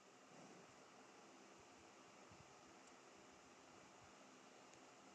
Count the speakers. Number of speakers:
zero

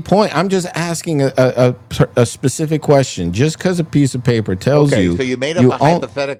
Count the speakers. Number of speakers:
two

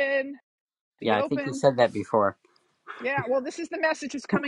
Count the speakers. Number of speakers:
two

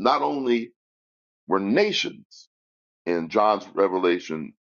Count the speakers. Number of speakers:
one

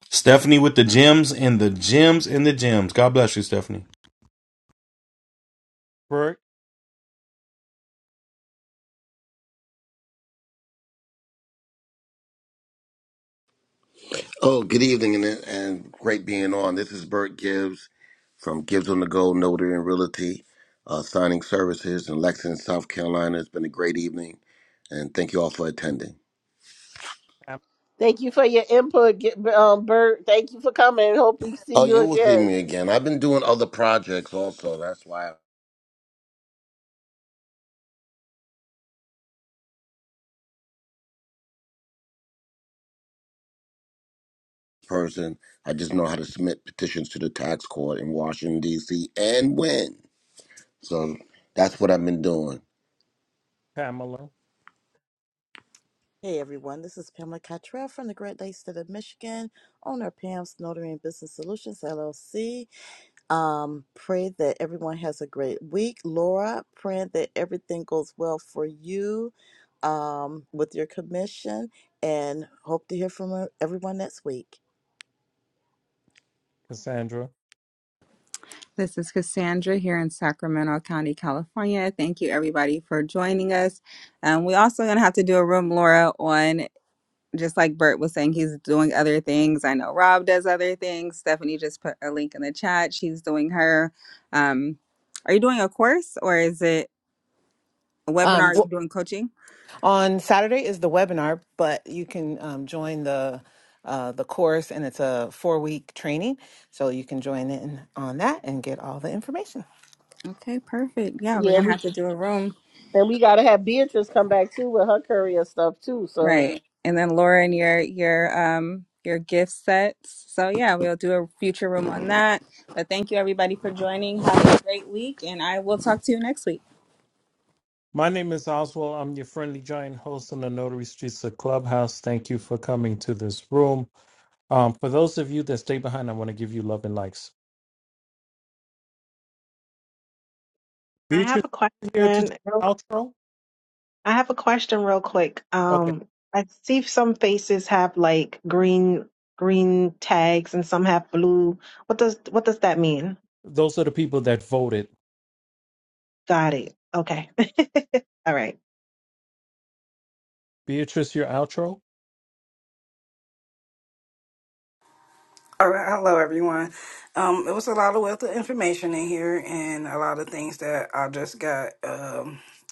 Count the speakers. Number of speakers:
nine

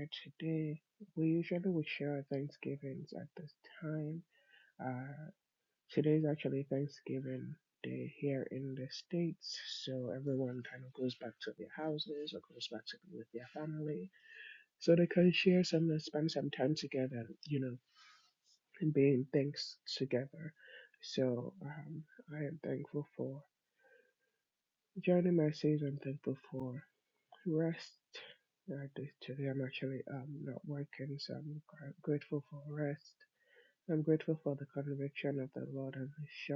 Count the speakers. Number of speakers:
one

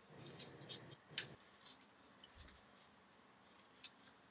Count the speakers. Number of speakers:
zero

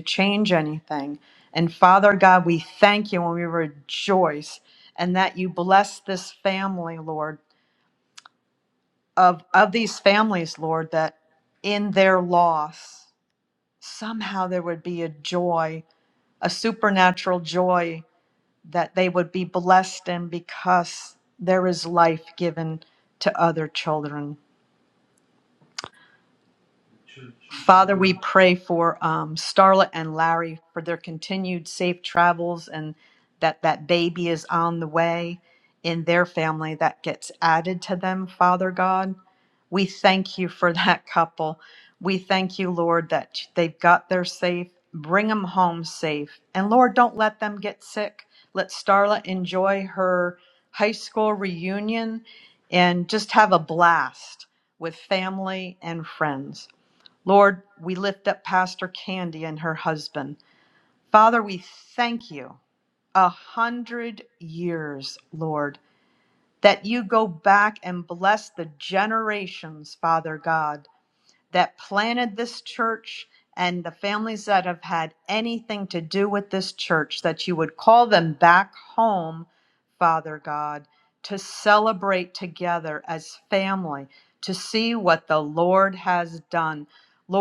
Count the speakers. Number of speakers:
one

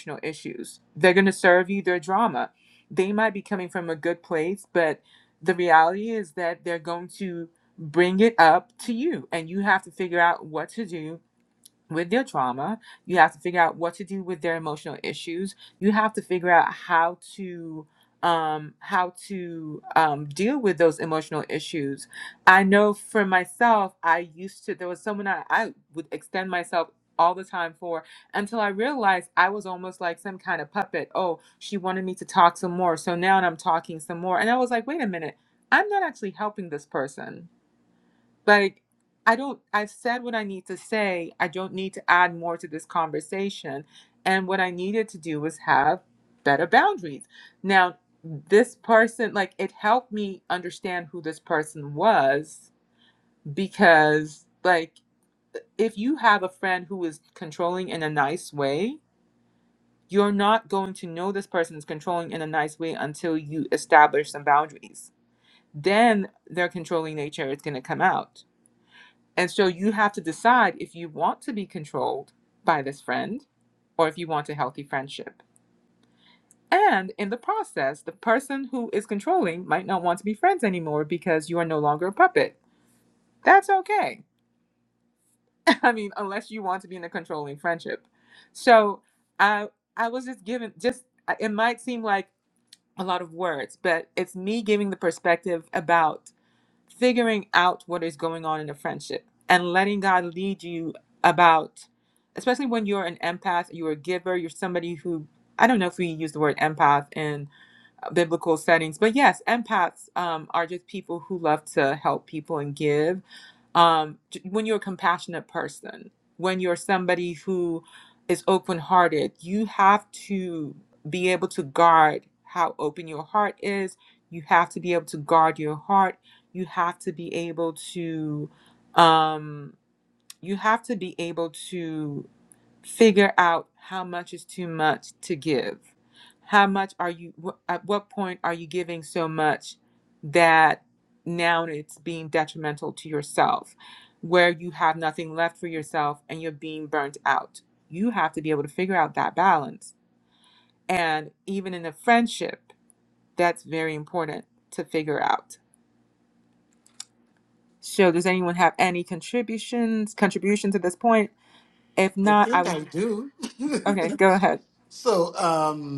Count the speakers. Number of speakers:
two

